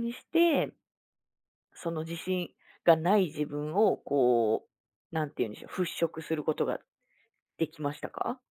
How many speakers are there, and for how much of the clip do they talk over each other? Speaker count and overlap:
one, no overlap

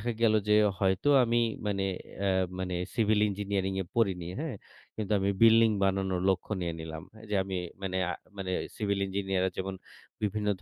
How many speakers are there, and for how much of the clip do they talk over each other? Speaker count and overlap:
one, no overlap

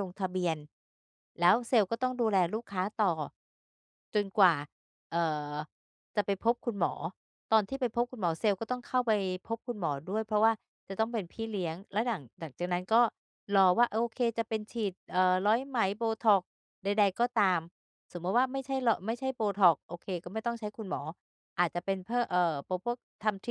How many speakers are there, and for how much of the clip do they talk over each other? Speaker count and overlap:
one, no overlap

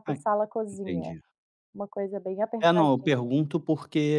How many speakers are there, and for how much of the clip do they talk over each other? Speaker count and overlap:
two, about 26%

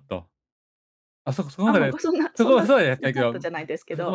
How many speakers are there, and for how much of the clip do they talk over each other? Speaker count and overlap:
two, about 38%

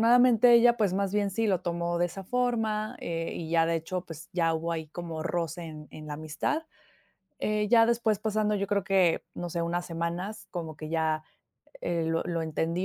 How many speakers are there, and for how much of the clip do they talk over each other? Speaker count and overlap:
one, no overlap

